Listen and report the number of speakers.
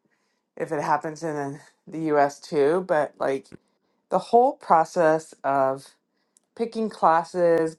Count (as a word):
one